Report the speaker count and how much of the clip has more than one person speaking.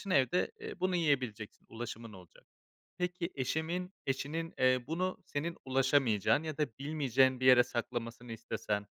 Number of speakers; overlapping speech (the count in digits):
1, no overlap